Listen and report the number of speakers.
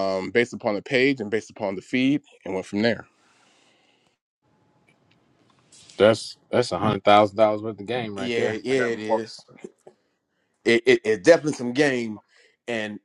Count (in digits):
3